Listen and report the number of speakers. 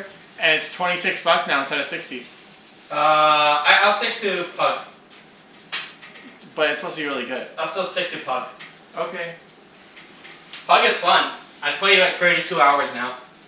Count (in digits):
2